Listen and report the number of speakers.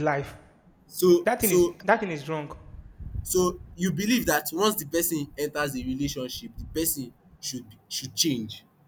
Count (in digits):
2